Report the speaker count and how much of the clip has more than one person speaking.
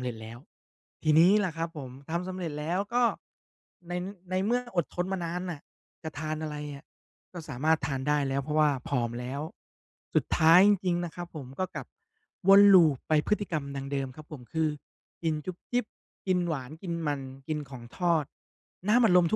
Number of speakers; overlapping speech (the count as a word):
one, no overlap